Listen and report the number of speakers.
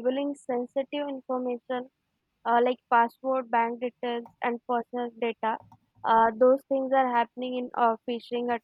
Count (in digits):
1